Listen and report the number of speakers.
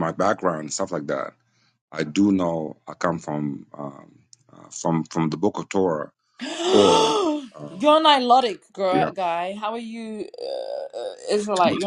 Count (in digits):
2